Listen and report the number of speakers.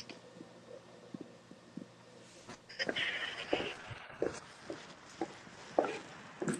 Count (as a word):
zero